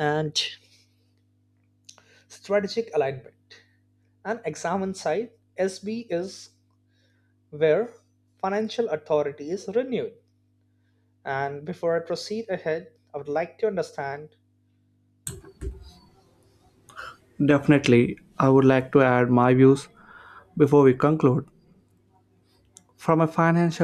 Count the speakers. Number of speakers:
2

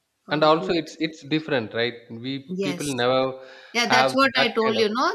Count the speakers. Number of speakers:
2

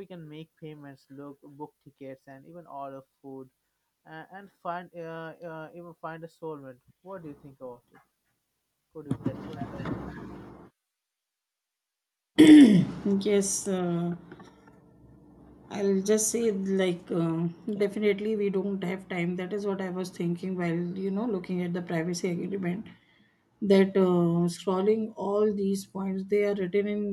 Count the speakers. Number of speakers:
2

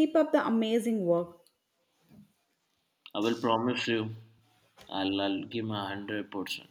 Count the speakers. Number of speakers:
2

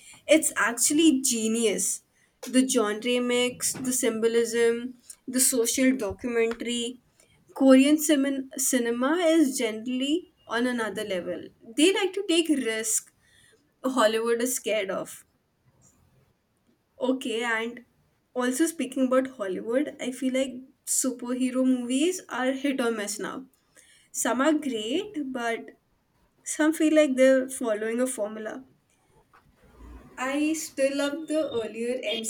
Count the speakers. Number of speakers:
1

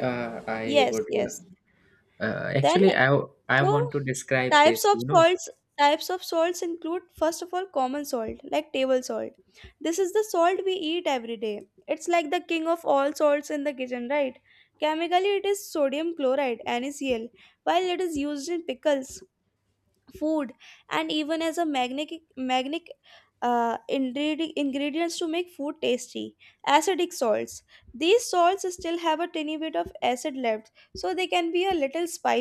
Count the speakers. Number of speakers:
2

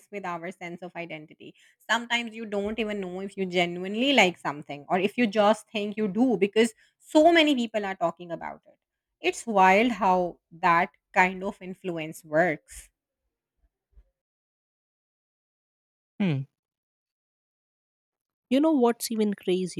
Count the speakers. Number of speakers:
2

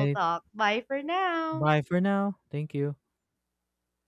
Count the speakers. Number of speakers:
2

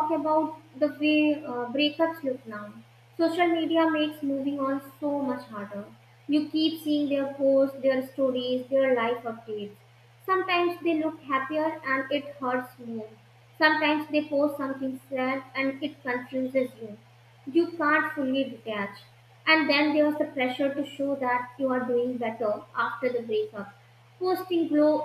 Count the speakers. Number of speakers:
1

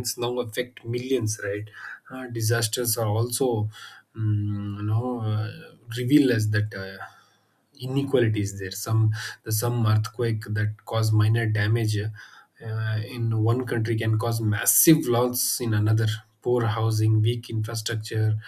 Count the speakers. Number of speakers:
1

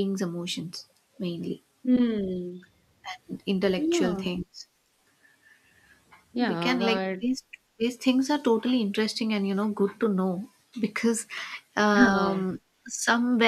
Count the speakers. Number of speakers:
2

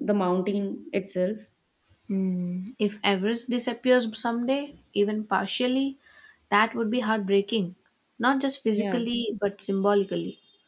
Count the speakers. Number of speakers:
2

